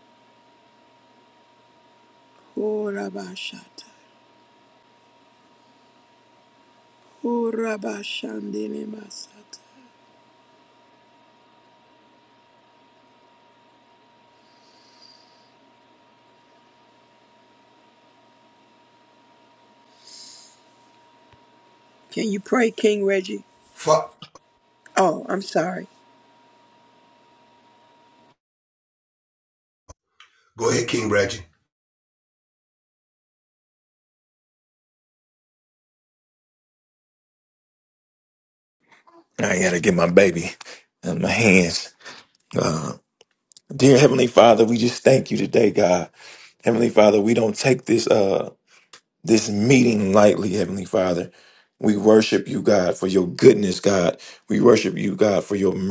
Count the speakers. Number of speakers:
3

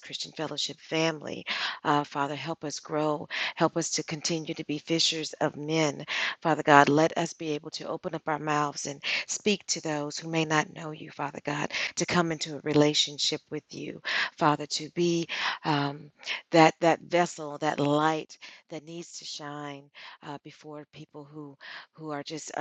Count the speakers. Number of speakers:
1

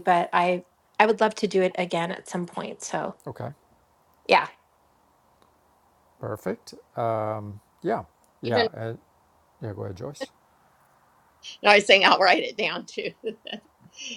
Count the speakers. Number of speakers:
3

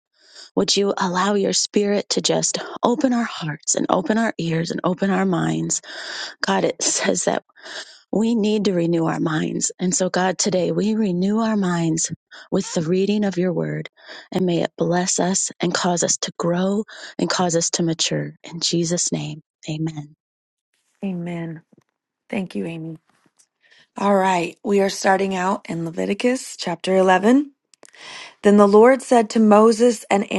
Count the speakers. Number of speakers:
2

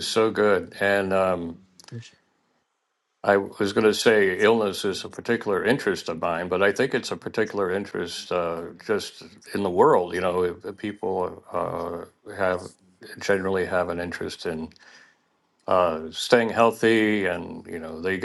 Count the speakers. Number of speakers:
1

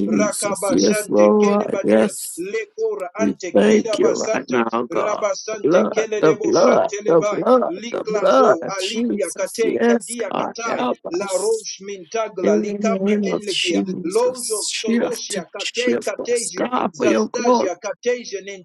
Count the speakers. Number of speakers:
2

